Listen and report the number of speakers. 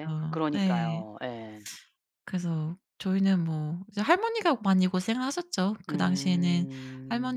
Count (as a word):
two